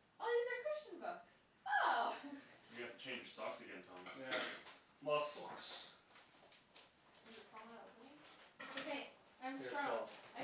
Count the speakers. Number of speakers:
four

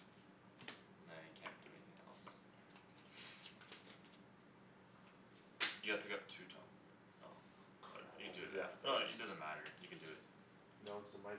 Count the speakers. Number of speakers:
two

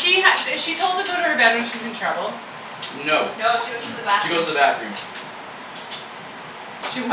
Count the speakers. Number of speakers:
three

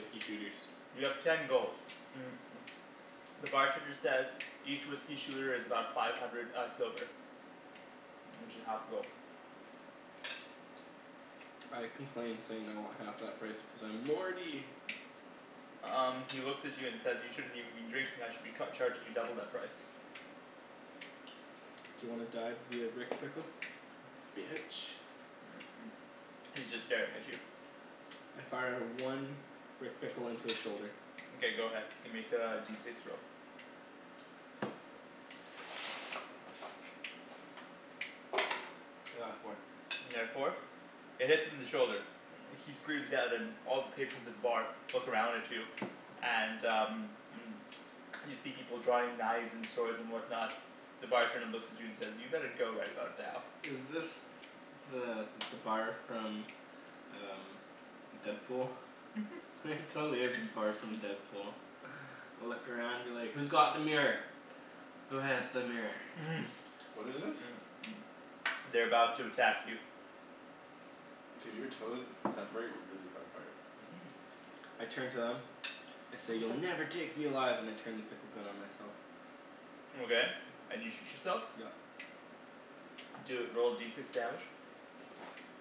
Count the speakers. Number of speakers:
three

